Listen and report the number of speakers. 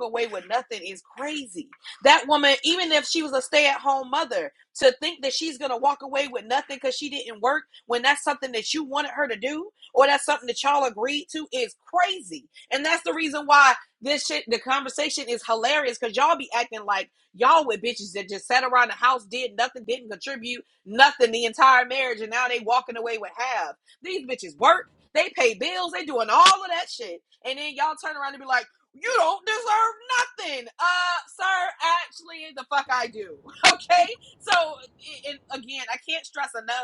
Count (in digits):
1